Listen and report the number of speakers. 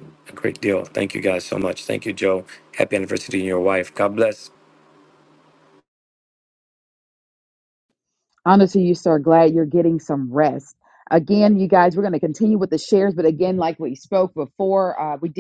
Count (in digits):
2